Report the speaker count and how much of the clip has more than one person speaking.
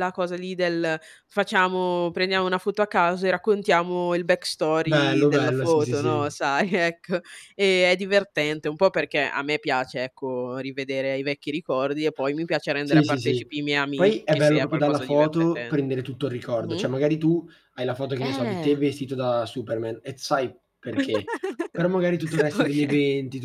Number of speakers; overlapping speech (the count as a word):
two, about 22%